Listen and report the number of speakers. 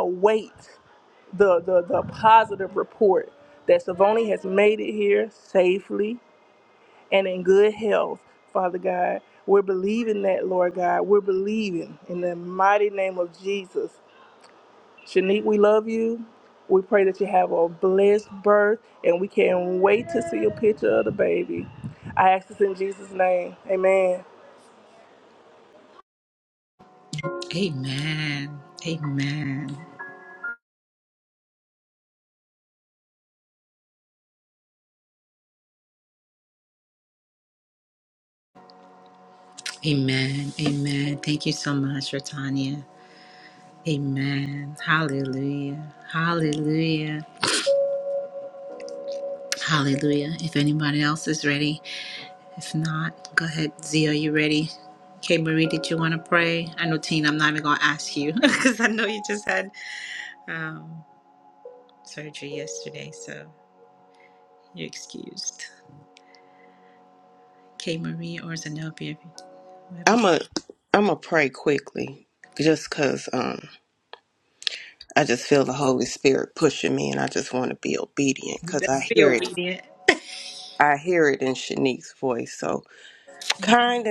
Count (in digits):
3